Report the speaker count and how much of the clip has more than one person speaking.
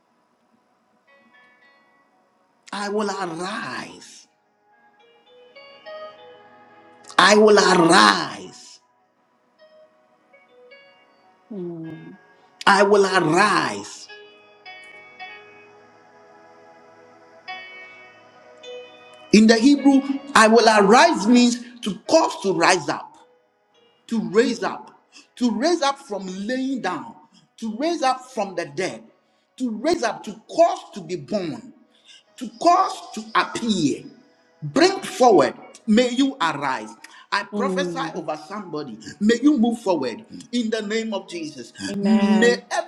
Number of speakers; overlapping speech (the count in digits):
2, about 3%